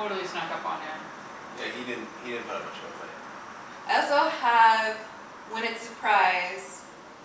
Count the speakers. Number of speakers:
3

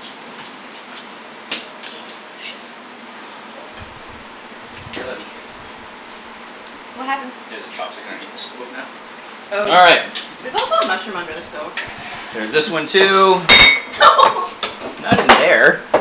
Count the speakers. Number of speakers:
2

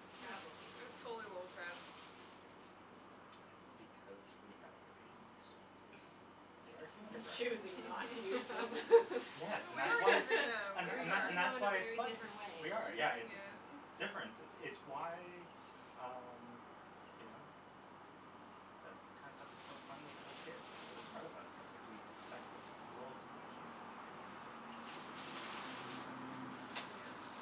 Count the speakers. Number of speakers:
4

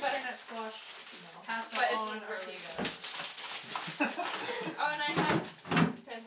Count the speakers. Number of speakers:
2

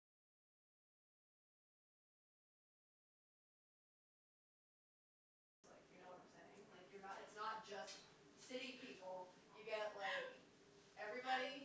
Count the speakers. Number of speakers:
1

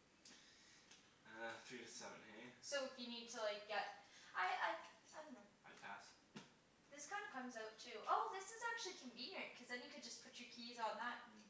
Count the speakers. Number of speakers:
2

